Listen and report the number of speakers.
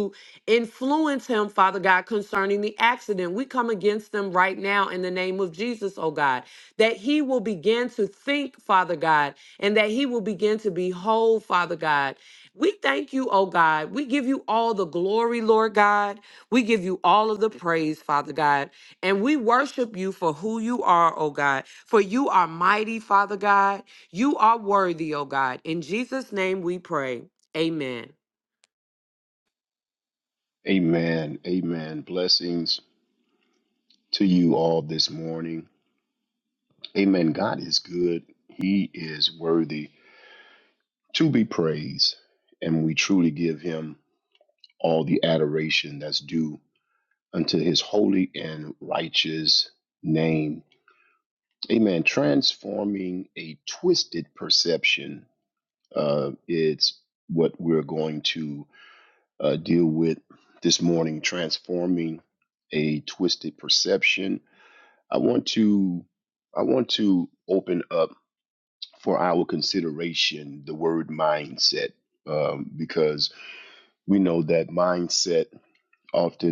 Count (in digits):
2